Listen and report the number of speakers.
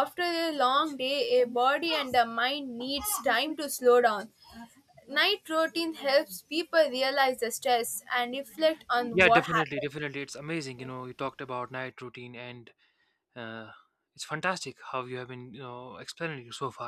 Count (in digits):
2